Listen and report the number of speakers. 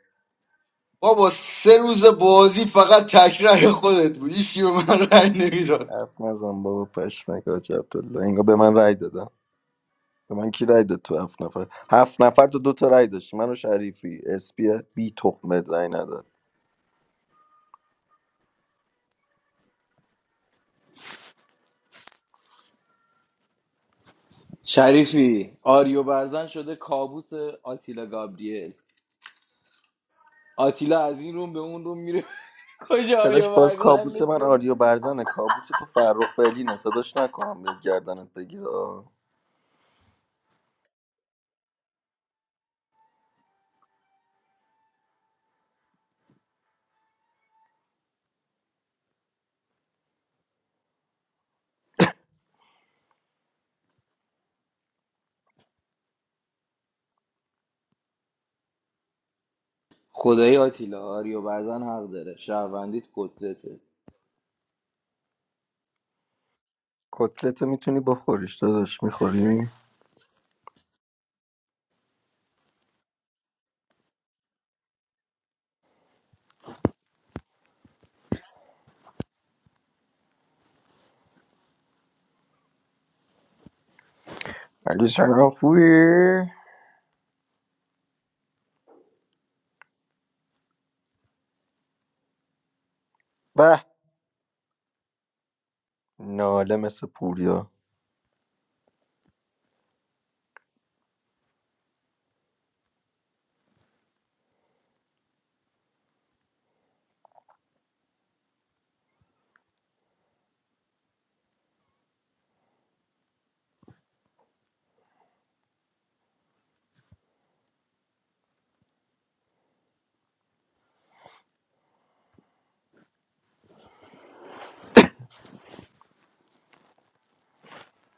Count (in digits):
3